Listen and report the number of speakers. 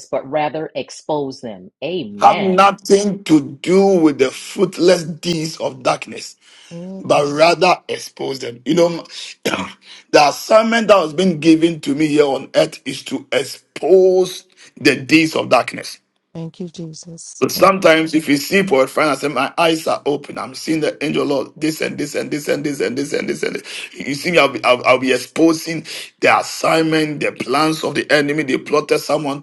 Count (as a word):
three